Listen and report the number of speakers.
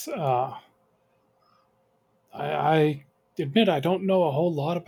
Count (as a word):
one